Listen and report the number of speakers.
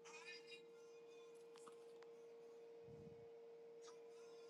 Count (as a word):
zero